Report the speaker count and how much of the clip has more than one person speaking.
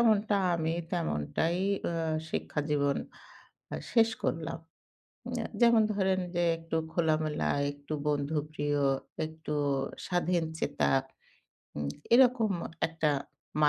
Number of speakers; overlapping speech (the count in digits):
1, no overlap